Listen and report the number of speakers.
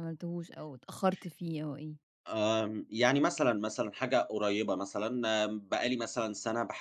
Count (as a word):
two